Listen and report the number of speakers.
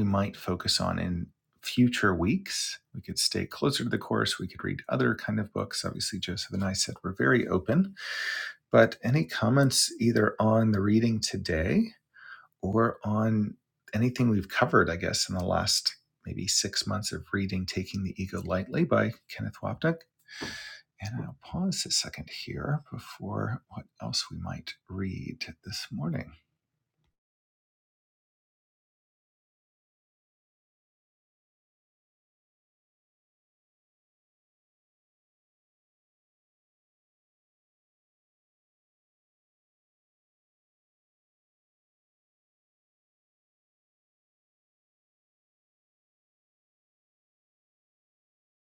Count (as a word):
one